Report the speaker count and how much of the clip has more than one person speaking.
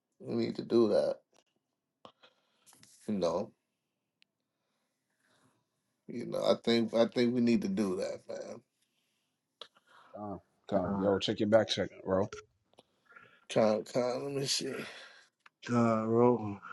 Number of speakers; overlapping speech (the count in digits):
3, about 2%